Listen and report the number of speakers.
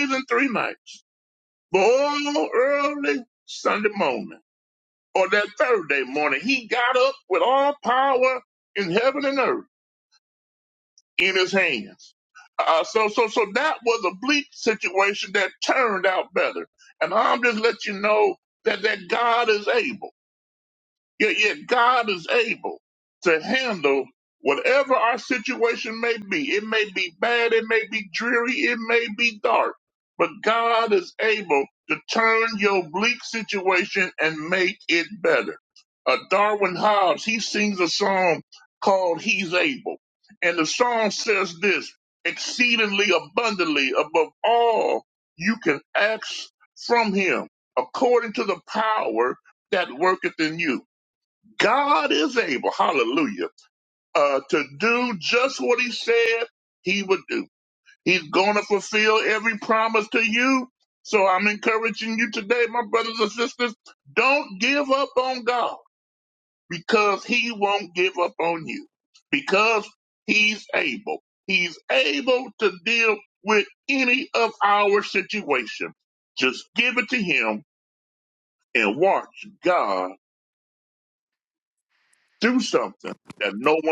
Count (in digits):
1